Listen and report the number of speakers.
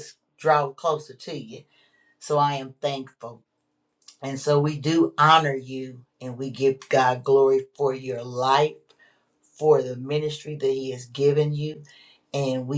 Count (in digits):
1